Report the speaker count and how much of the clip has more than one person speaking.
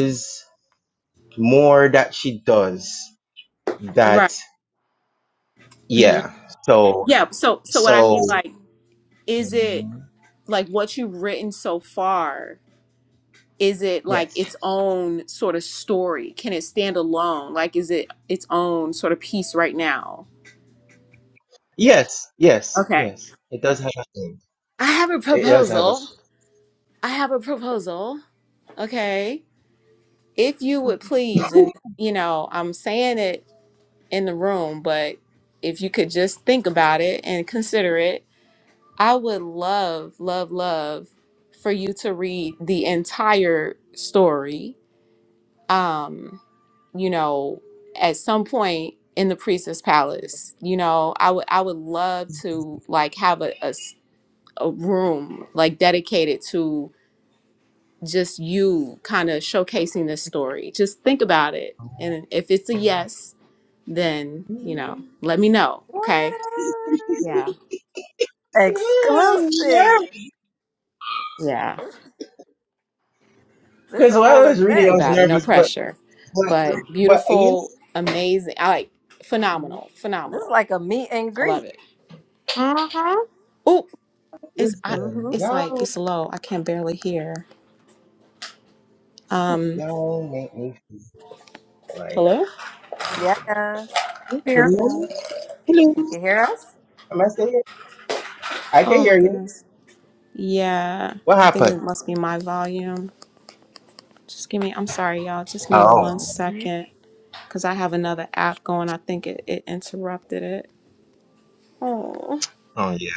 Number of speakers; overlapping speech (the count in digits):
4, about 8%